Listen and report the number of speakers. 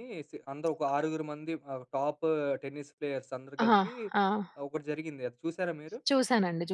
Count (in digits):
2